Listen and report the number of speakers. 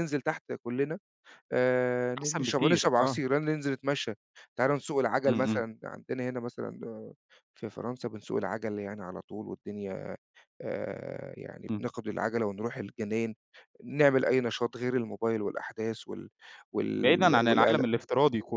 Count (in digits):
2